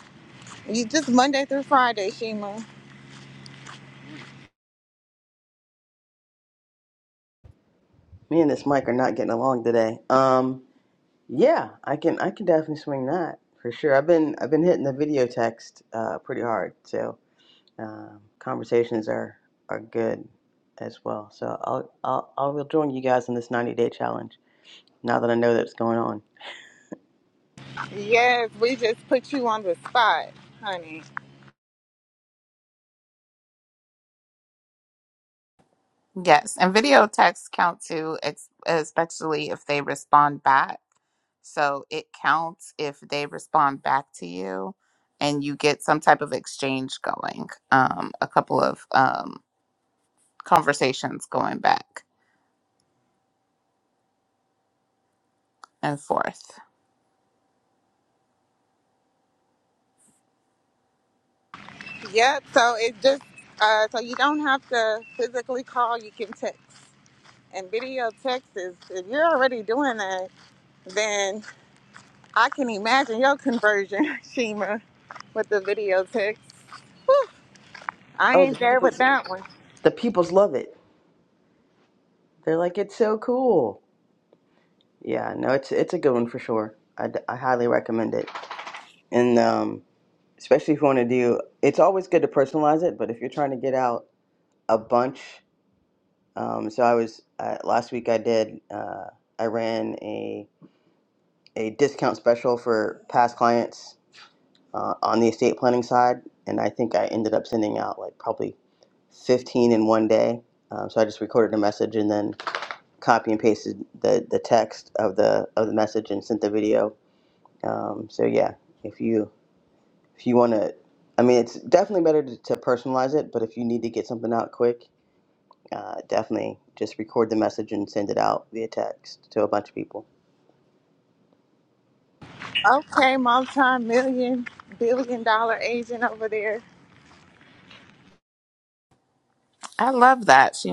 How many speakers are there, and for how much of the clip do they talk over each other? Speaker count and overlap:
three, under 1%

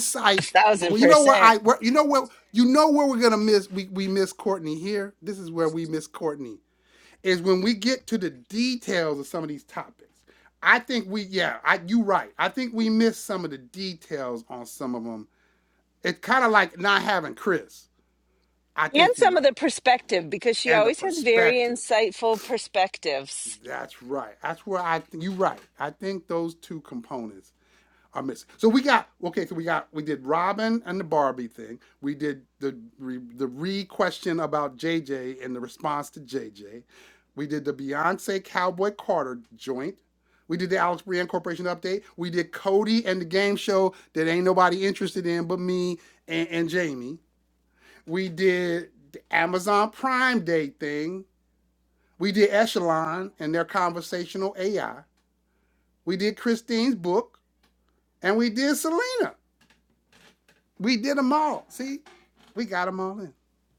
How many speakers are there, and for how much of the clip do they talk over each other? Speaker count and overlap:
two, about 4%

